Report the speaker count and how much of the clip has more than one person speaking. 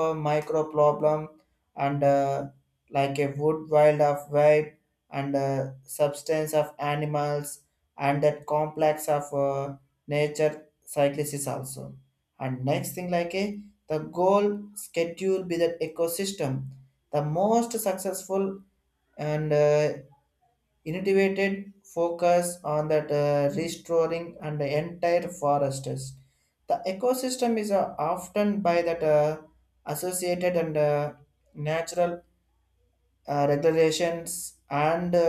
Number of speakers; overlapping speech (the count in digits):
1, no overlap